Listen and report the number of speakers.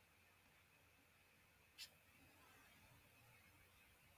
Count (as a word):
zero